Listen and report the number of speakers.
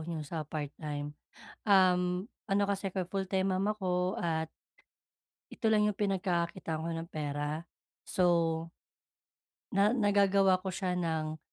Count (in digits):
1